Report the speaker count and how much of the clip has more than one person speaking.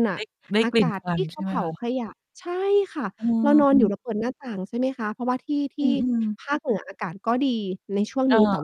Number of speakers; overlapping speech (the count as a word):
two, about 20%